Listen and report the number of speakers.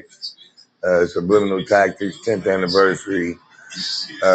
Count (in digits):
1